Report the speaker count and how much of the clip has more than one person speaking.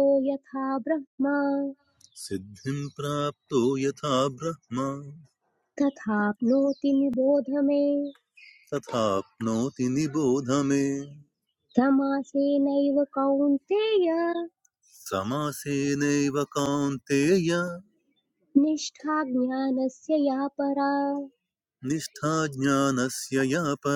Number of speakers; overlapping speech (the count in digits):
2, no overlap